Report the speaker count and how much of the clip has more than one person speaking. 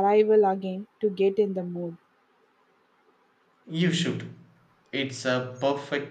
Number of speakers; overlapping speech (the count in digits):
2, no overlap